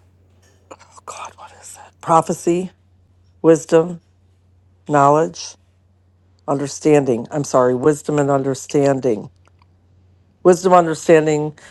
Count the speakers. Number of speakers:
1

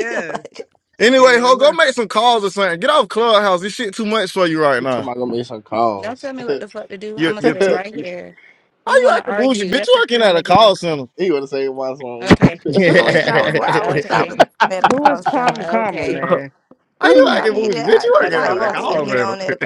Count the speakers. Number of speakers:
5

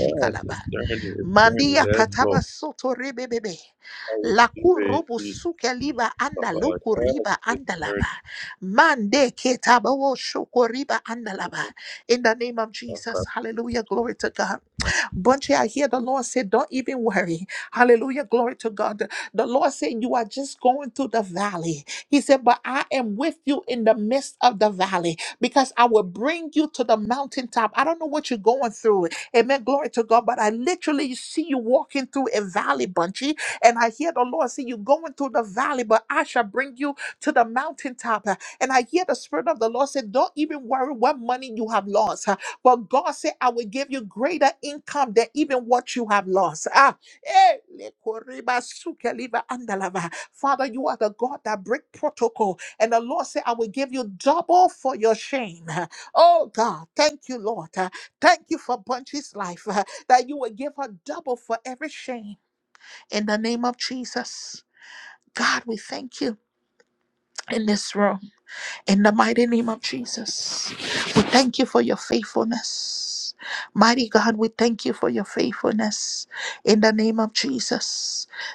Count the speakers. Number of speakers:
2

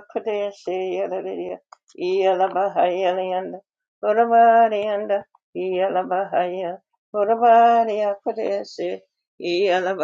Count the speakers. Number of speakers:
1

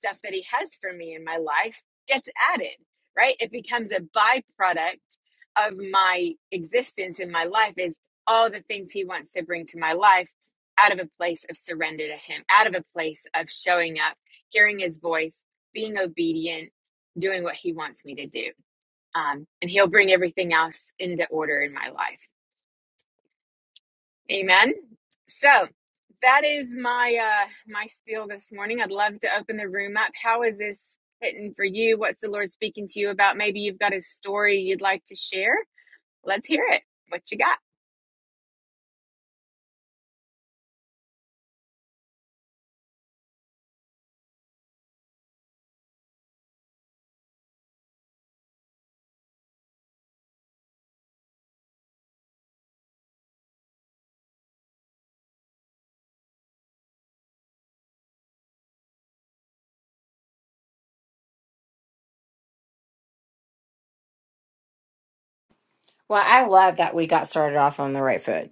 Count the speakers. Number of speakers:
2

